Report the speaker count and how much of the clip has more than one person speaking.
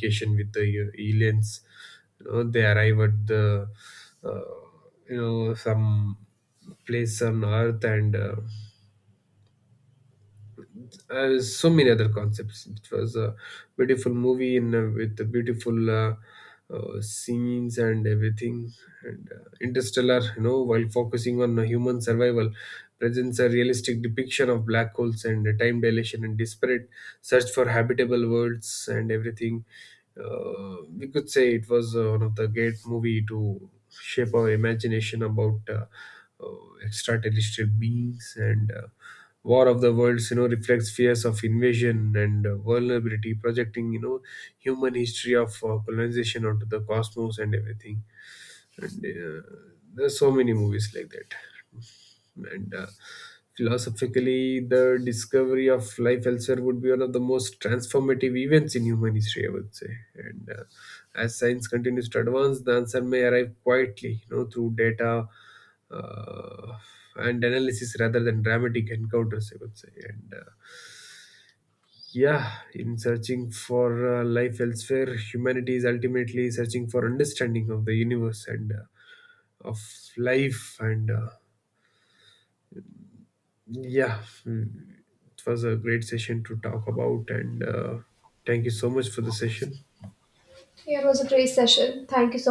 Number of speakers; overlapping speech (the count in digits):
2, no overlap